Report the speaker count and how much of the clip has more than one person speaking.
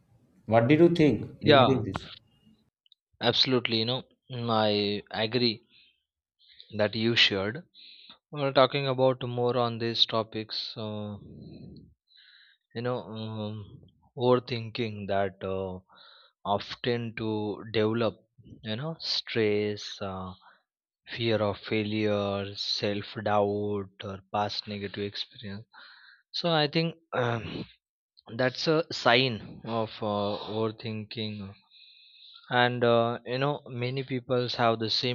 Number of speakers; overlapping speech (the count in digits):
2, about 1%